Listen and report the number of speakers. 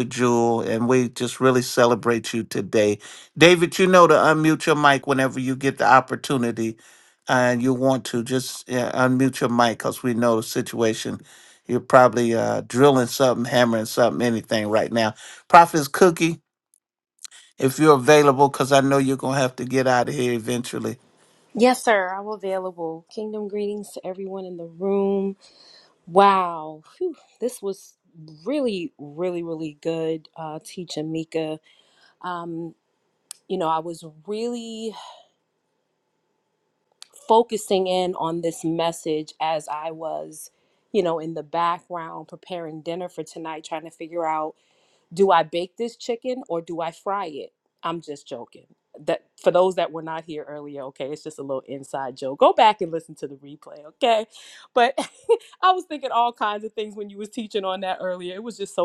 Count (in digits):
2